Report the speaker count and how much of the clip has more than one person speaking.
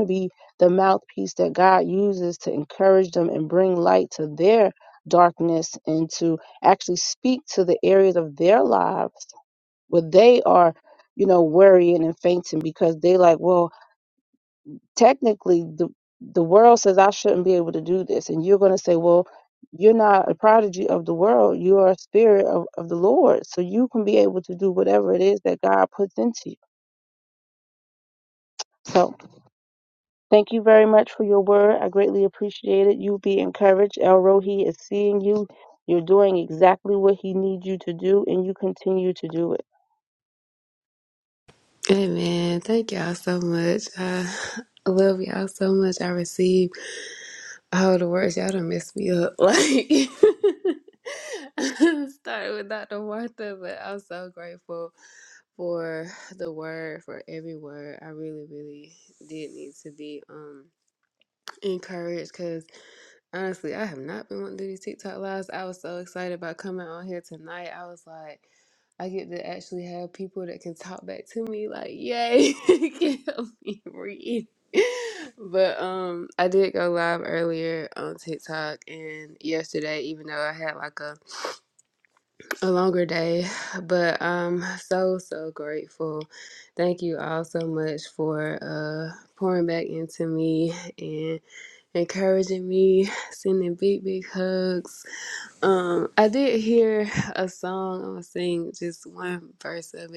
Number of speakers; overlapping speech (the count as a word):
two, no overlap